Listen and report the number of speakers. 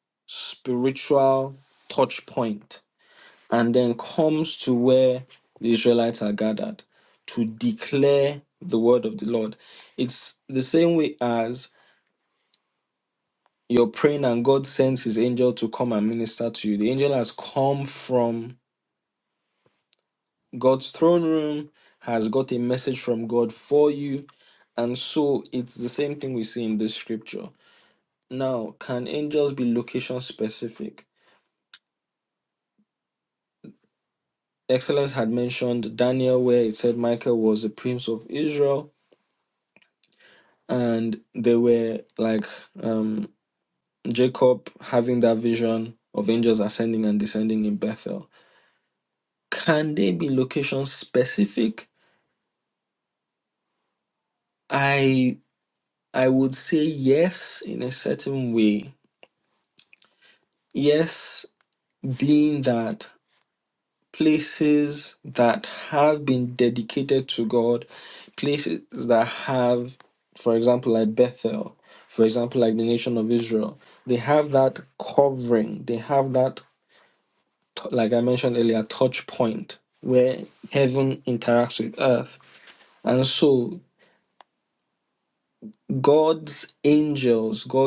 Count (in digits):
1